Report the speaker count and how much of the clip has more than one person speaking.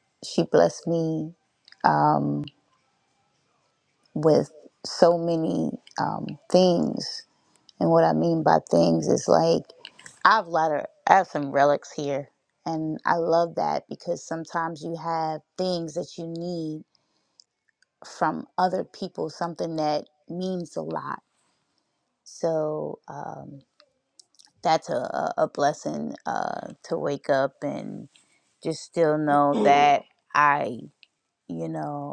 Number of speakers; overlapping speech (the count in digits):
1, no overlap